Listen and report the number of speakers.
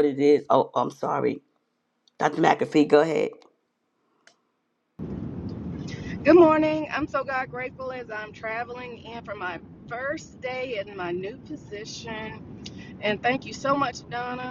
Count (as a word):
two